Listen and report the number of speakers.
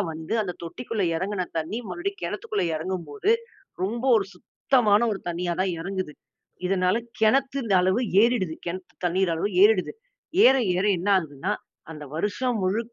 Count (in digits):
1